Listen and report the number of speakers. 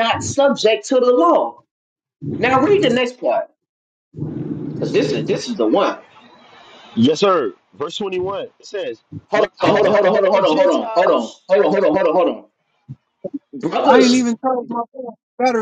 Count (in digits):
3